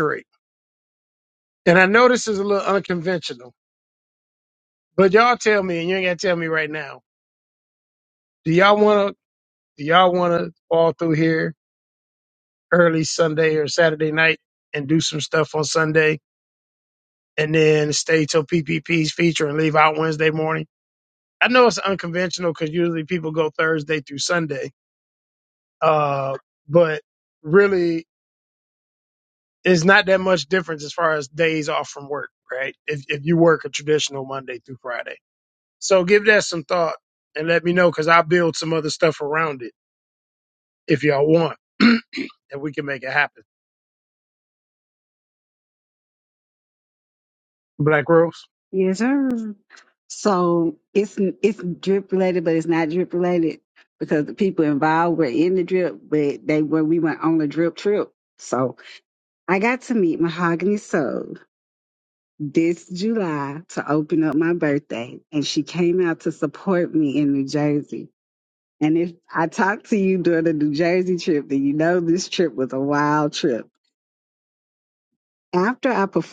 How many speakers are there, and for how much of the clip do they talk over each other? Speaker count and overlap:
2, no overlap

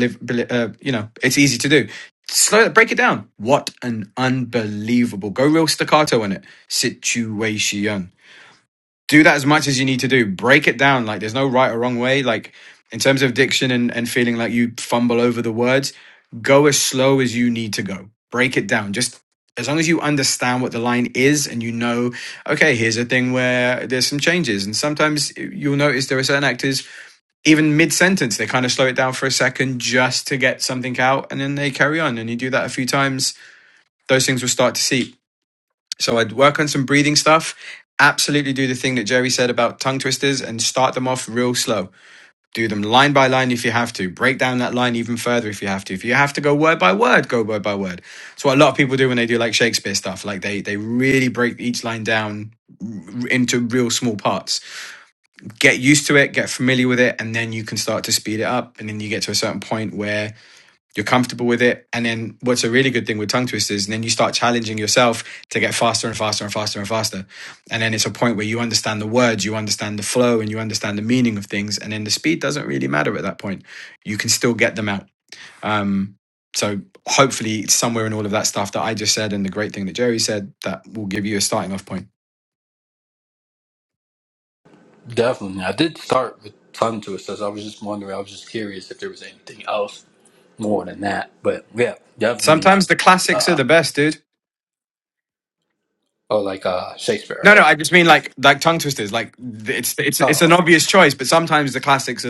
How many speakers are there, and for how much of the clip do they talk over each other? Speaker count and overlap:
2, about 1%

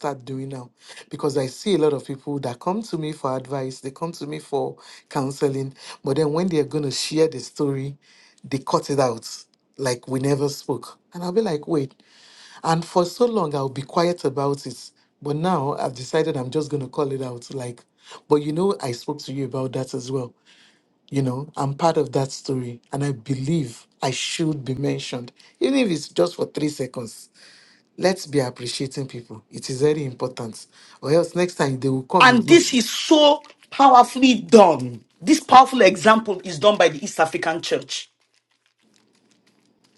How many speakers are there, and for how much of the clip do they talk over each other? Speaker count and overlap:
2, about 1%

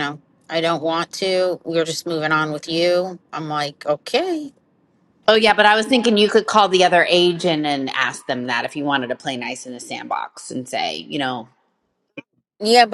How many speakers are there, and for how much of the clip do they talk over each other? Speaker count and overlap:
2, no overlap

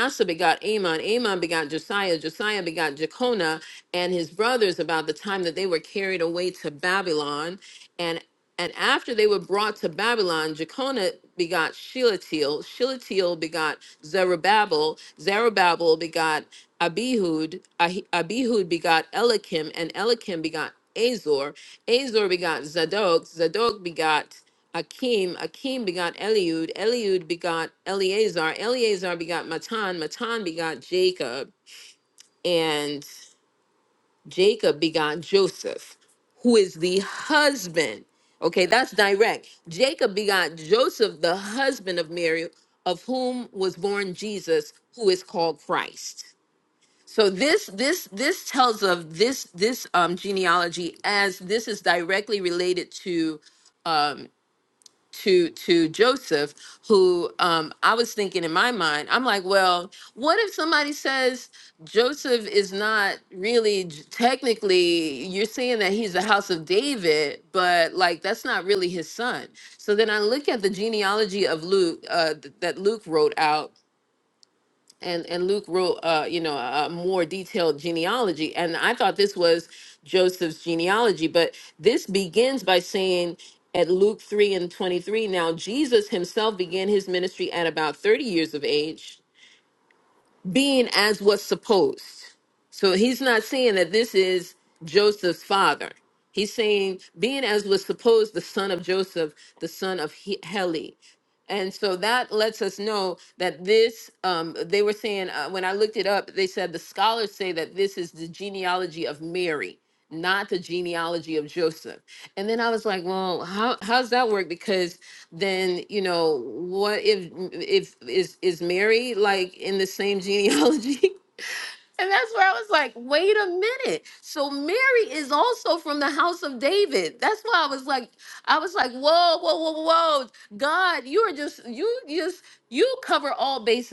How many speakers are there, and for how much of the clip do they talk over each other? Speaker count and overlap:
1, no overlap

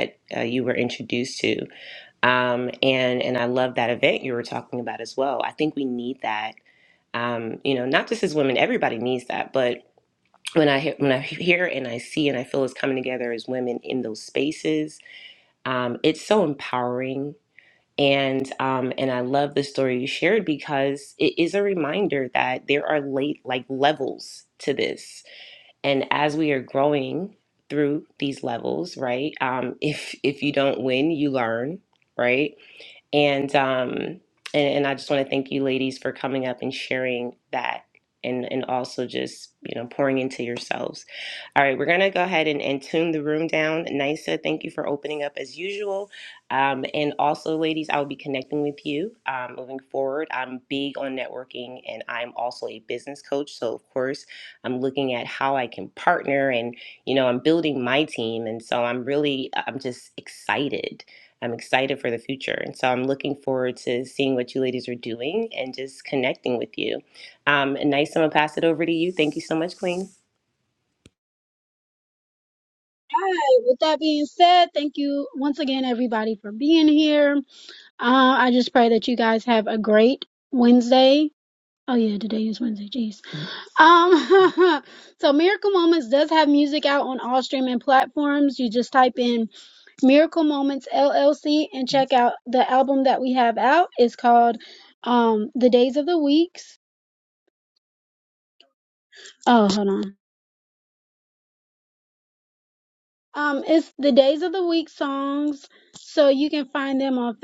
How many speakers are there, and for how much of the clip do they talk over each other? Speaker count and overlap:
2, no overlap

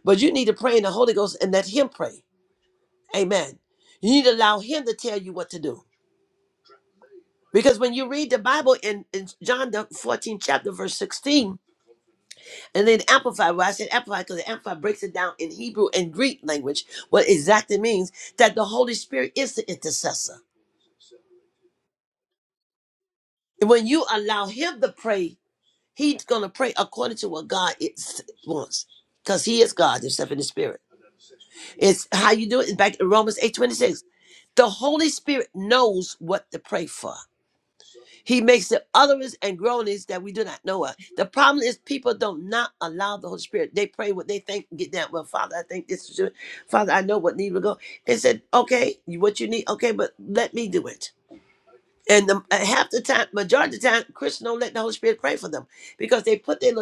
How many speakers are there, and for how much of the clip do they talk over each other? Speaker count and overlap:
1, no overlap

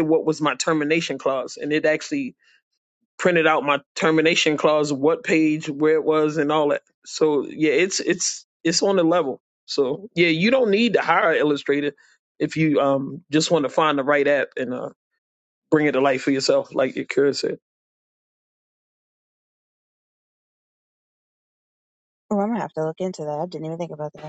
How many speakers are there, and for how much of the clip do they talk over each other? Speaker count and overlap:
2, no overlap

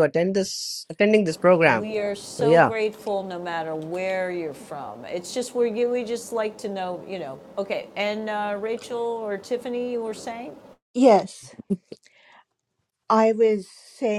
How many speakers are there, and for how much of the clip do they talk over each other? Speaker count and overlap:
3, about 4%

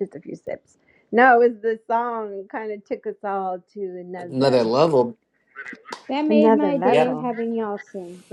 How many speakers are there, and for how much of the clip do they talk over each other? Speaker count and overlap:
3, about 18%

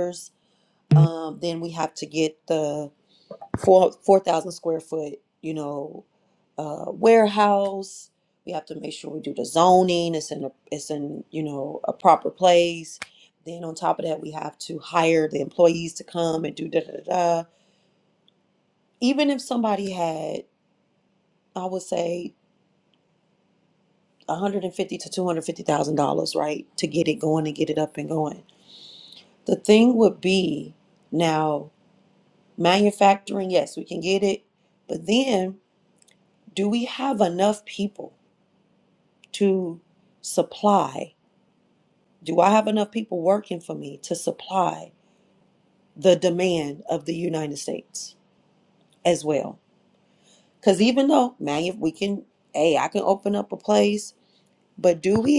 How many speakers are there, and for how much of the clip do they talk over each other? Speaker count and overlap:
1, no overlap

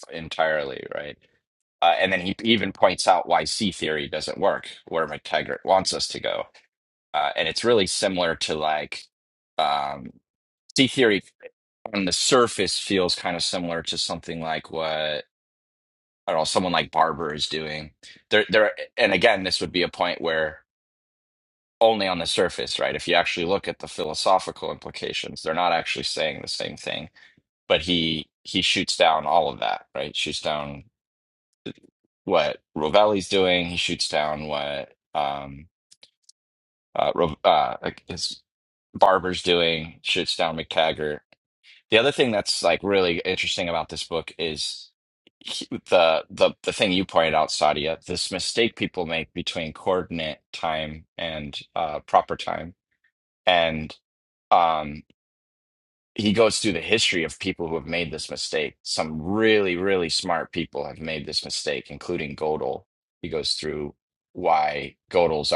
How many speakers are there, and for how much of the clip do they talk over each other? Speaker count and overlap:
1, no overlap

